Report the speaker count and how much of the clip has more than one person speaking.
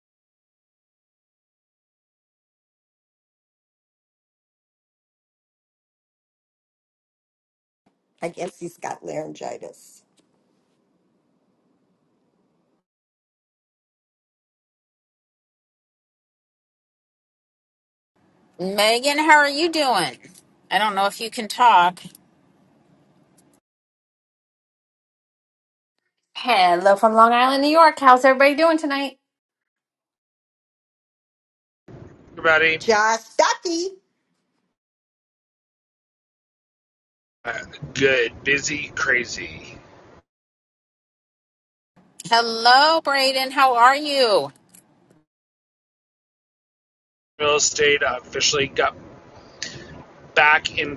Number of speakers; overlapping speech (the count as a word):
four, no overlap